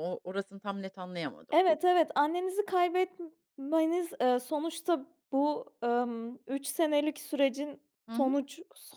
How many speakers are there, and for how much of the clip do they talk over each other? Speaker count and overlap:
2, about 2%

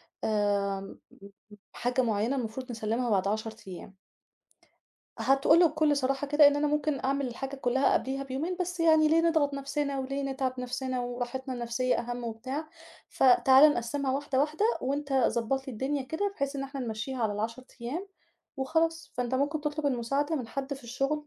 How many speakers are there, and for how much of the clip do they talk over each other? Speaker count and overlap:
1, no overlap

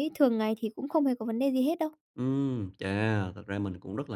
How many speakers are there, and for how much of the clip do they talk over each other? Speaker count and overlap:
2, no overlap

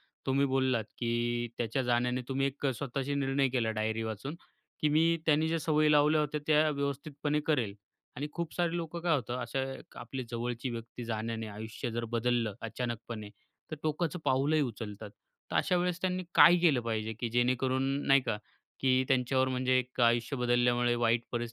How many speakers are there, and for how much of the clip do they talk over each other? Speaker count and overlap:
1, no overlap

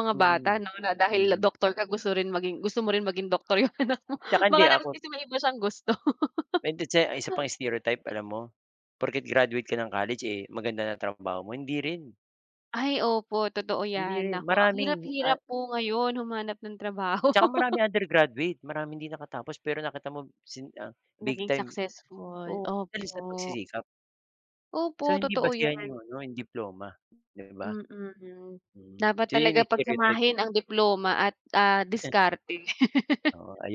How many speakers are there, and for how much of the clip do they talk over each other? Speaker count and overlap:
2, about 20%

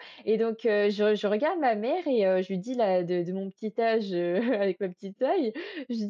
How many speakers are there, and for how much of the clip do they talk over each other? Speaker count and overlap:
1, no overlap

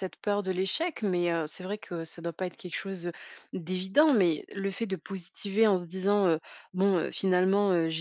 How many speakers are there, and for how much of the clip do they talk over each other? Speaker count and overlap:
1, no overlap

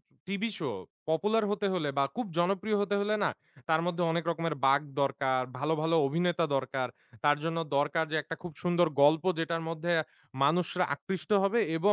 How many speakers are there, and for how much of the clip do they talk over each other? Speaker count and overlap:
1, no overlap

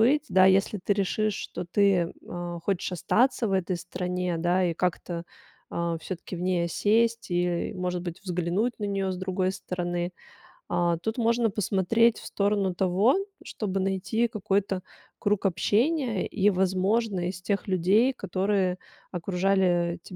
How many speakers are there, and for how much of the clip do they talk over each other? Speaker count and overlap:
1, no overlap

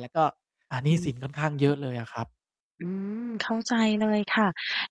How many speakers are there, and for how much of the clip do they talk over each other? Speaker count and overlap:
2, about 5%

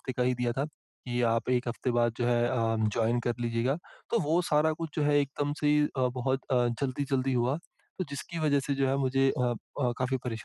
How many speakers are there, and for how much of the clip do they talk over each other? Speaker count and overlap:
1, no overlap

